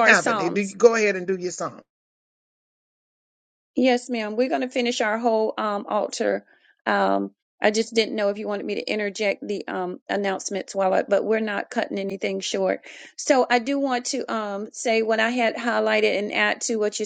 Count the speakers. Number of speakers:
two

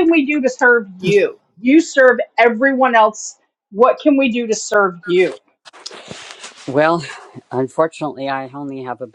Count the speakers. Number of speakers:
two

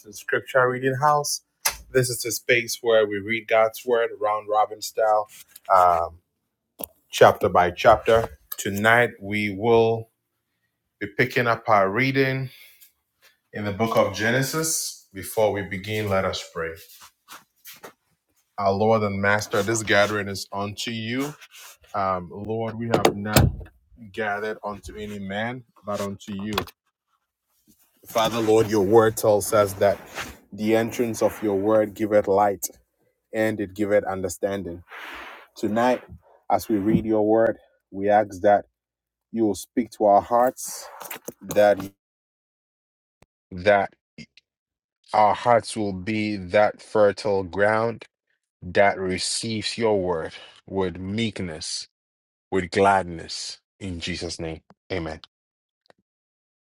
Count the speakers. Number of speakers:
one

